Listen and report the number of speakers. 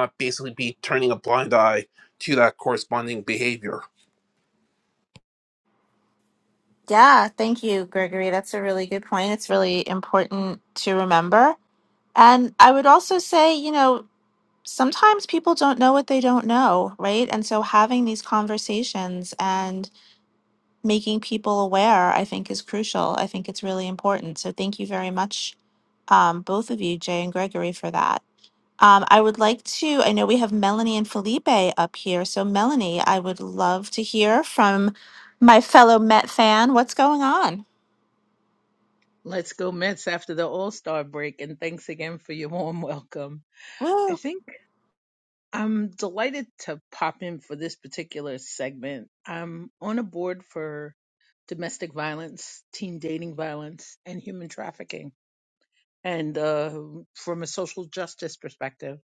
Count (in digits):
3